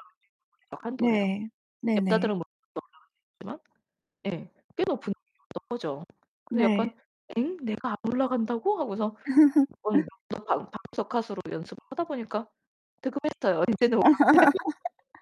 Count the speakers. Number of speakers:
2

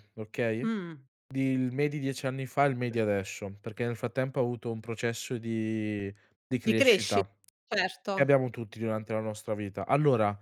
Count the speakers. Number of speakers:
2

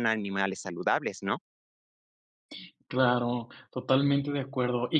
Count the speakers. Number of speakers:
2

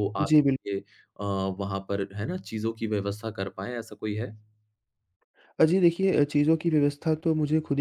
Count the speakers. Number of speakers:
2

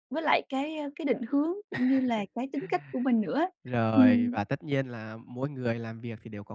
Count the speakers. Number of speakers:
2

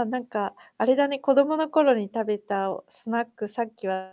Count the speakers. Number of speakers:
1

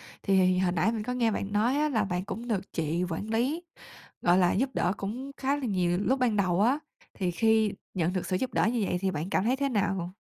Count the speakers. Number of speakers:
1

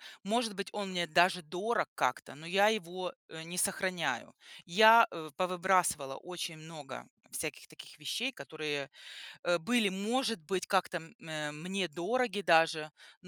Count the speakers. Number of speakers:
1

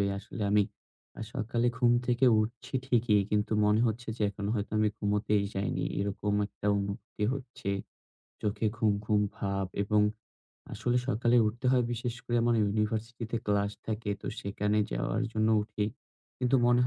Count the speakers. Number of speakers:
1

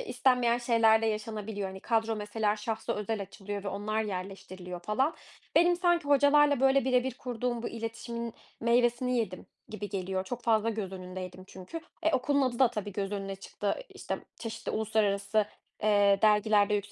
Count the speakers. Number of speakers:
1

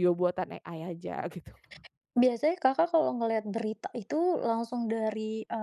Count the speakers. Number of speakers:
2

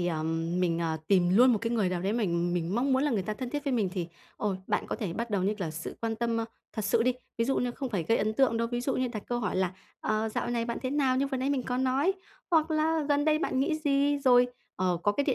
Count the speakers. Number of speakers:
1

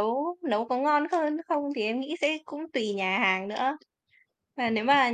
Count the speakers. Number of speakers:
1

